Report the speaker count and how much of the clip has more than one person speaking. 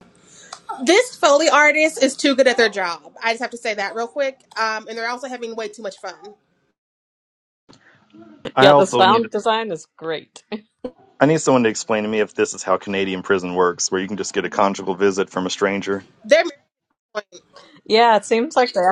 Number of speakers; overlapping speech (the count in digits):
3, about 4%